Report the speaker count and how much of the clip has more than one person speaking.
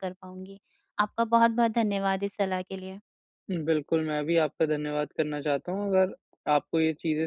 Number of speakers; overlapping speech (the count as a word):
two, no overlap